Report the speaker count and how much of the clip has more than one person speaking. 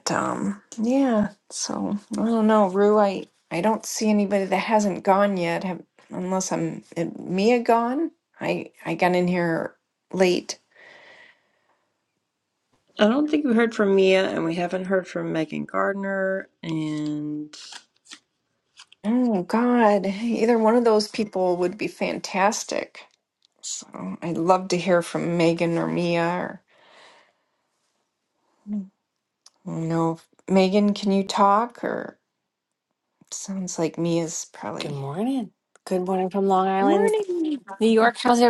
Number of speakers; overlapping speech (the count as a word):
three, about 1%